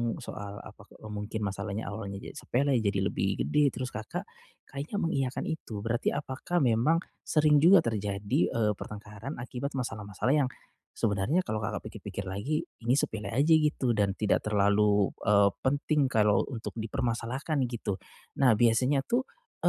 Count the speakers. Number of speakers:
one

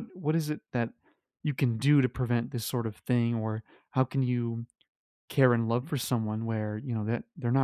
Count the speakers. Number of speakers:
one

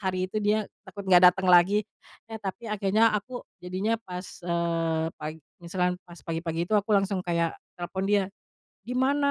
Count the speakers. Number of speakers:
one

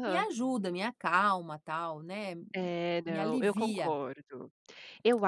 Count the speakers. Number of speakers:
two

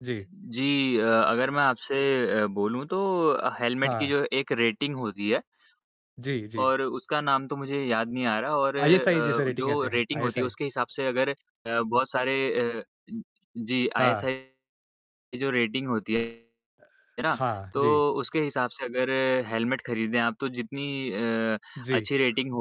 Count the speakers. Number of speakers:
two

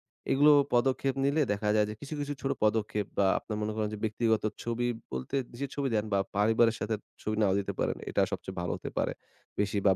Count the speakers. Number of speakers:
one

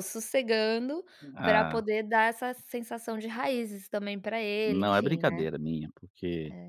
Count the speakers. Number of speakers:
two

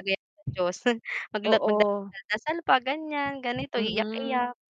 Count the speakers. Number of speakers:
two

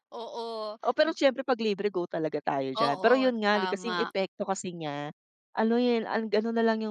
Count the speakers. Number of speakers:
two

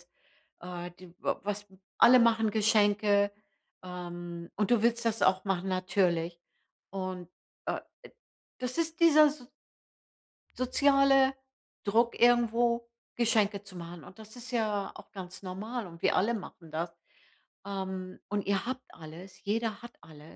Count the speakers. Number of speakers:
one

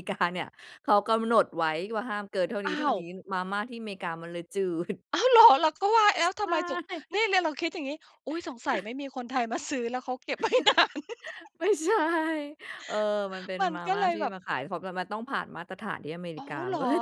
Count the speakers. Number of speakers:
two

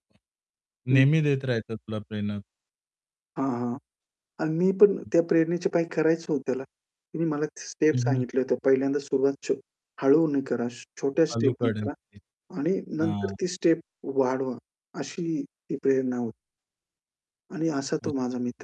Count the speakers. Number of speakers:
two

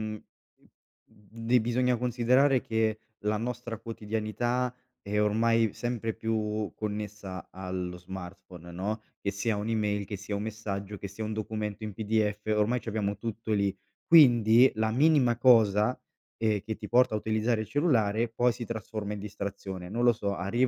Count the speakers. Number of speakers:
one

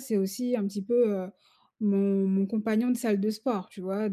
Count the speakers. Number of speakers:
one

